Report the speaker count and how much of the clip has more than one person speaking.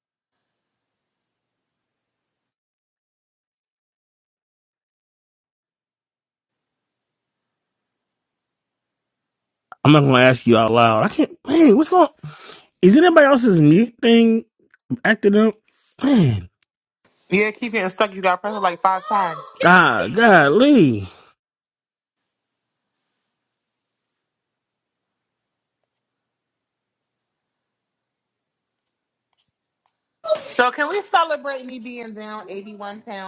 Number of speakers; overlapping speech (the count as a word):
two, no overlap